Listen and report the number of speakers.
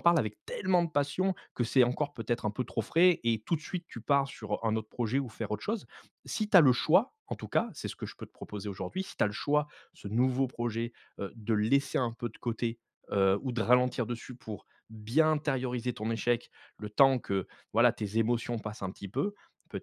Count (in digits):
1